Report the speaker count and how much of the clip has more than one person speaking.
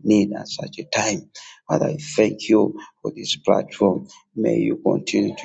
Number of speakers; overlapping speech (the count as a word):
one, no overlap